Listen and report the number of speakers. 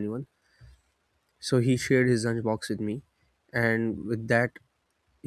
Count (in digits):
1